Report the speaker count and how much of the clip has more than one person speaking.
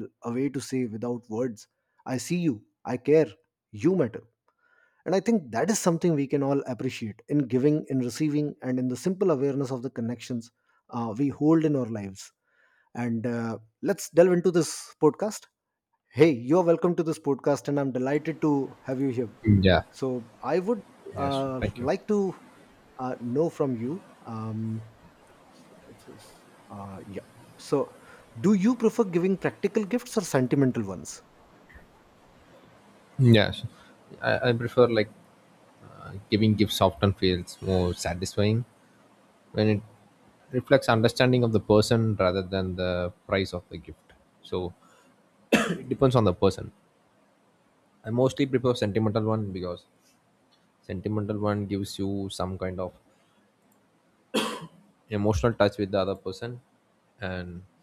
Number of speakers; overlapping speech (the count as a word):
two, about 1%